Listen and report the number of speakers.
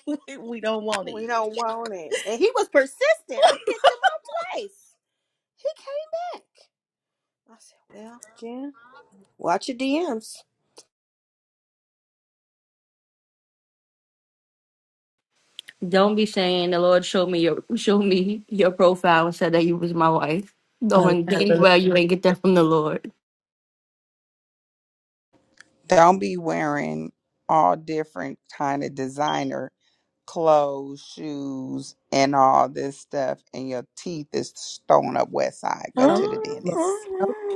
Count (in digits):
4